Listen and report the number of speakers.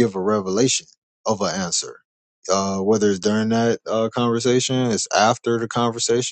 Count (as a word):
one